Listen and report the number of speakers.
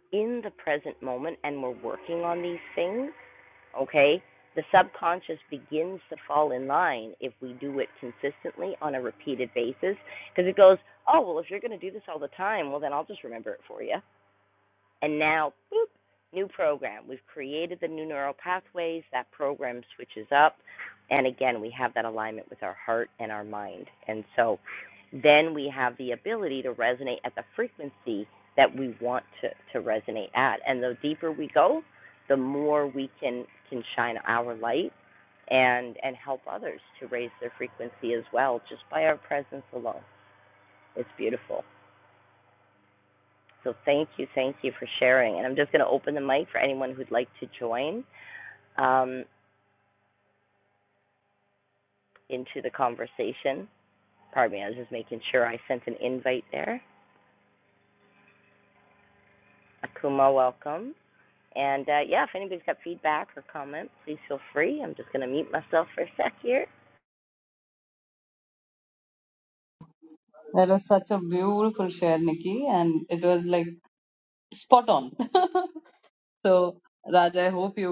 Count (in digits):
2